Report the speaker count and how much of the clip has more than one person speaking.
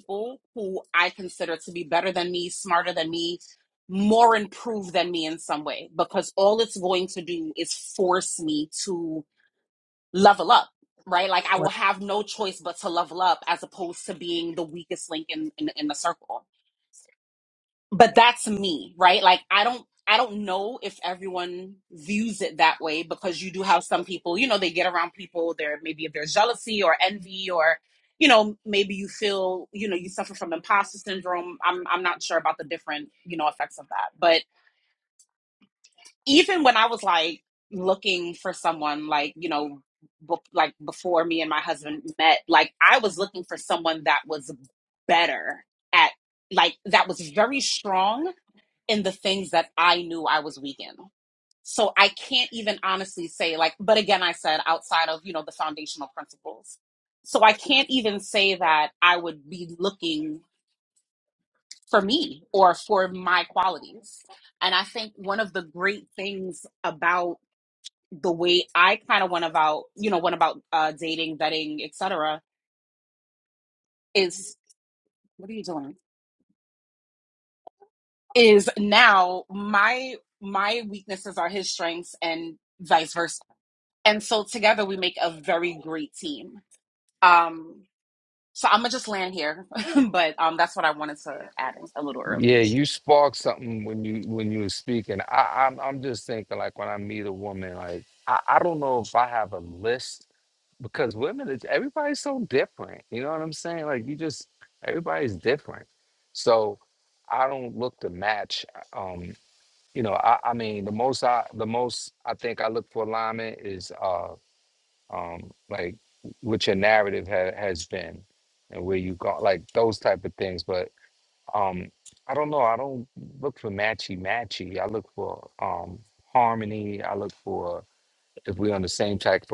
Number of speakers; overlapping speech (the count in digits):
2, under 1%